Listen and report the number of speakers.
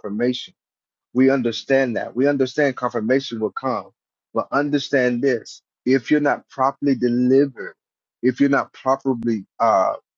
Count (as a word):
one